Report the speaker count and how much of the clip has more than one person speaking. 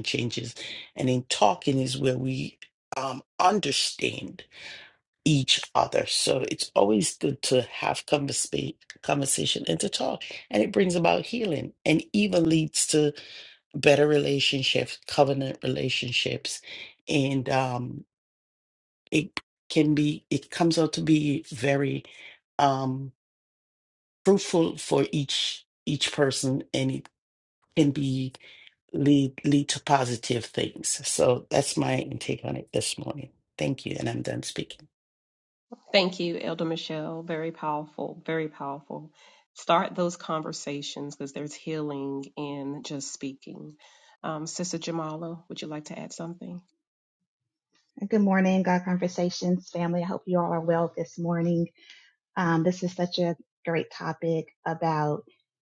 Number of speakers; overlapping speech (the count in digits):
3, no overlap